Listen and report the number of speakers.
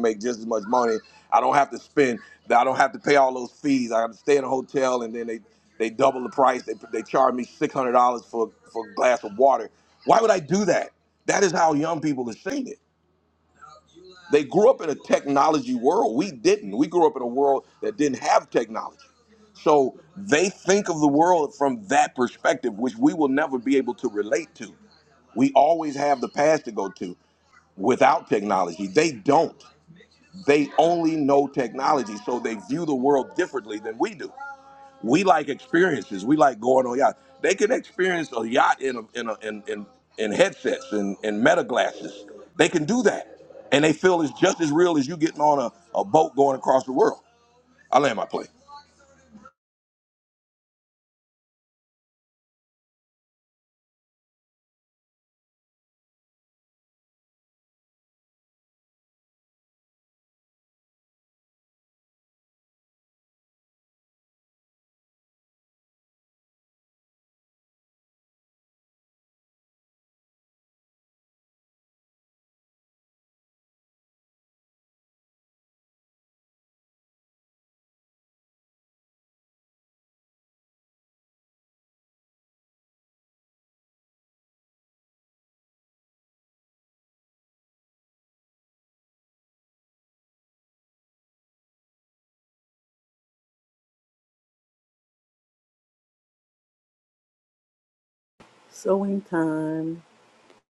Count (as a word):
two